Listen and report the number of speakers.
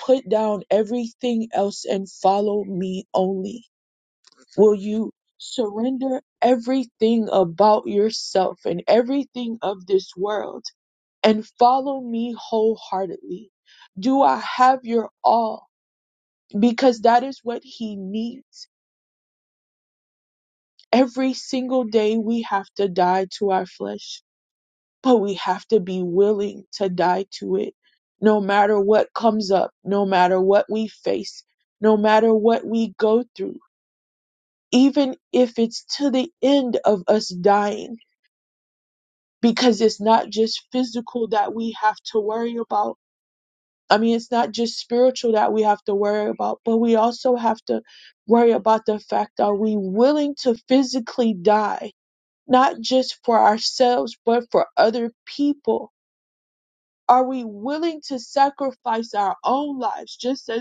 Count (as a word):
one